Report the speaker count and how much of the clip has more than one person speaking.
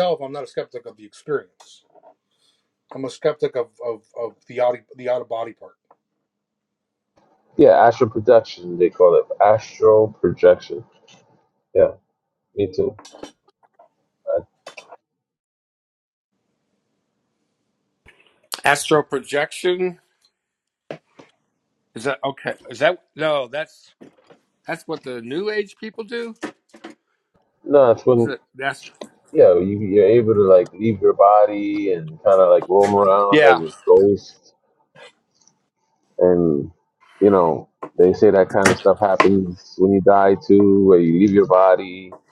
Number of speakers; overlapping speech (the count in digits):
3, about 1%